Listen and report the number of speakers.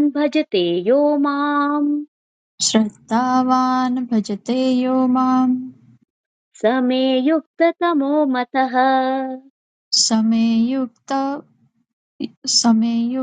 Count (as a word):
two